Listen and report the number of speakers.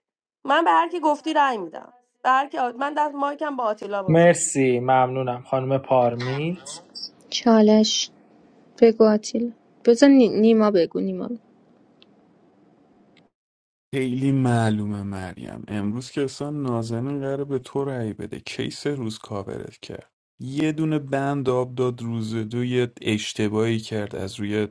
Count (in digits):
4